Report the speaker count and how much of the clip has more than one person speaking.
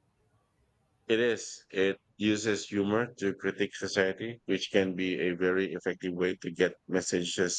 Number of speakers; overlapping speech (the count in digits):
1, no overlap